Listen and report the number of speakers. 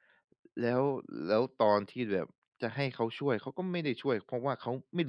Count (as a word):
one